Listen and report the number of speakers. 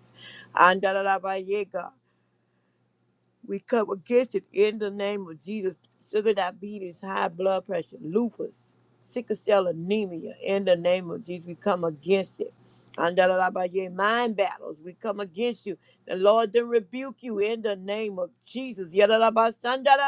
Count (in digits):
1